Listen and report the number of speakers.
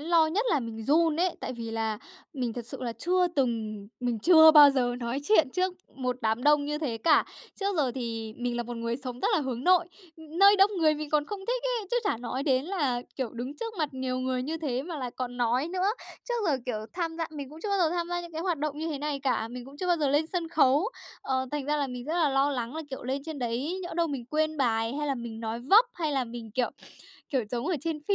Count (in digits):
1